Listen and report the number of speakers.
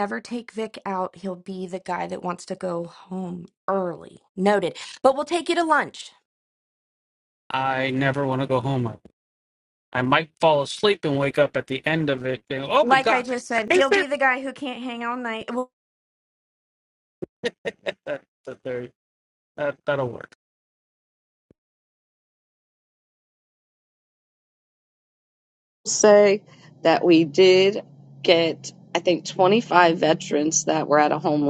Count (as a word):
three